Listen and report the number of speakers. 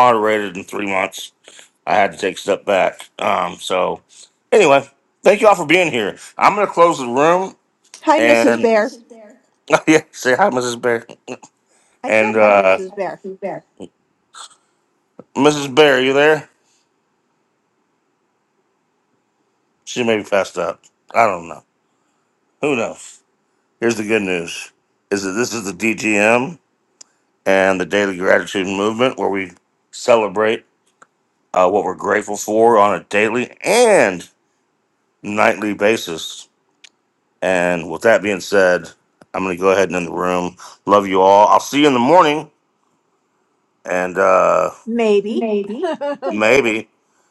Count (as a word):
two